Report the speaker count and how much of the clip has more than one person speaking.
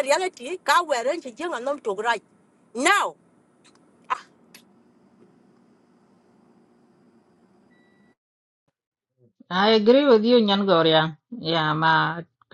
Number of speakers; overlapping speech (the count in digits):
2, no overlap